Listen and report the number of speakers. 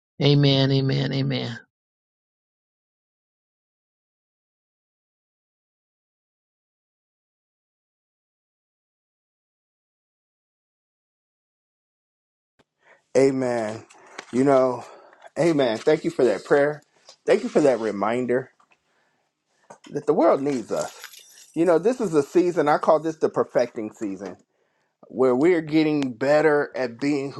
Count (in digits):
2